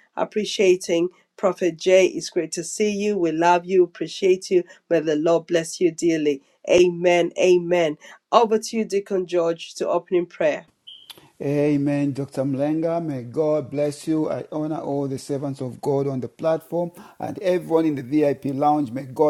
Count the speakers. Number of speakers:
two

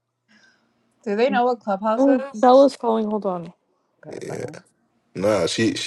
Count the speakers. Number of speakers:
three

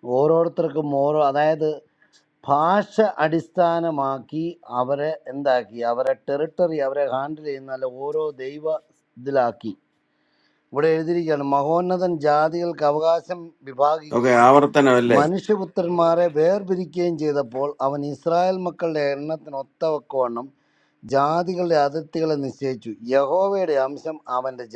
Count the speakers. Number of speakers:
two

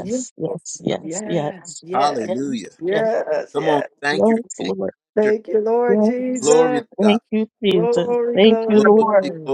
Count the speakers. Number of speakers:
three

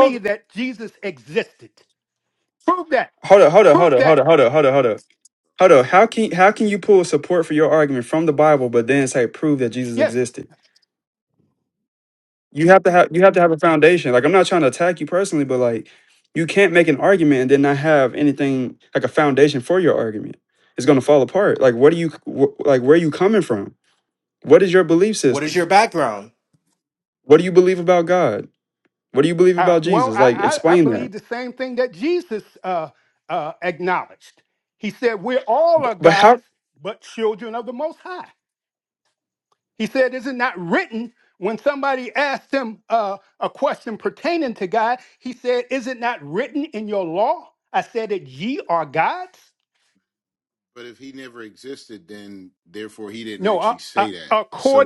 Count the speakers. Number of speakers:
four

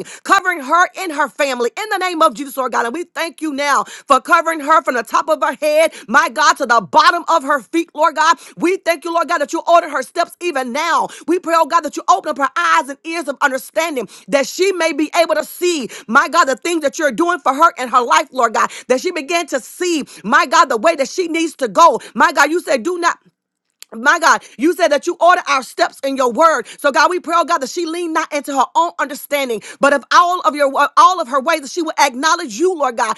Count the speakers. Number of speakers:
one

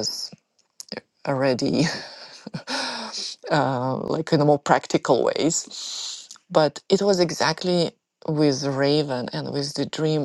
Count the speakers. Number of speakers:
one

